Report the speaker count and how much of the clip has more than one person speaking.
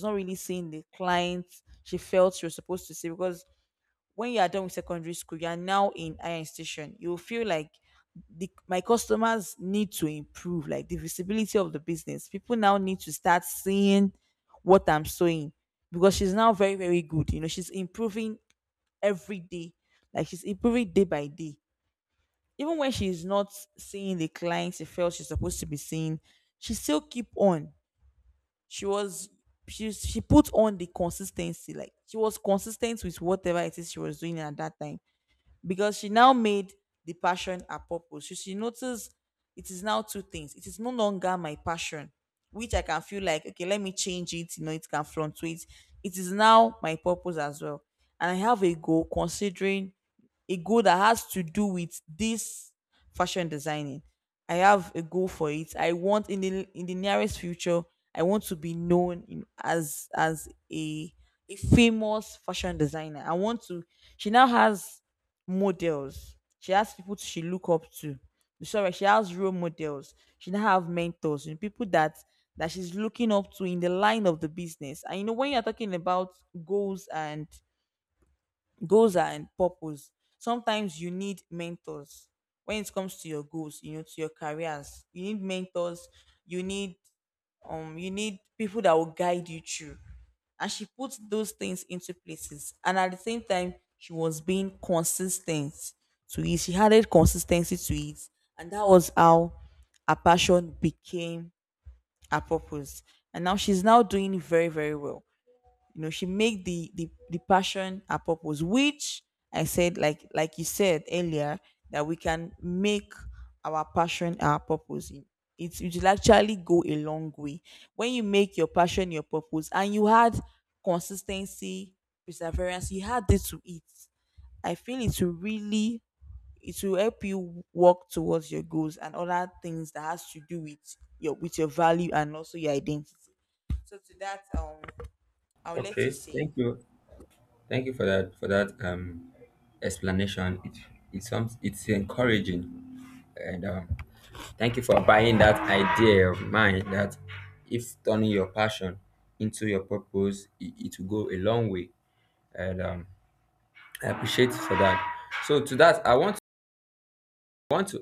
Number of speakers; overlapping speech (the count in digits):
2, under 1%